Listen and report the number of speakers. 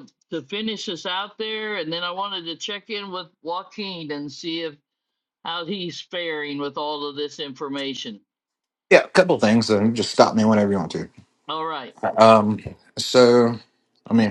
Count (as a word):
two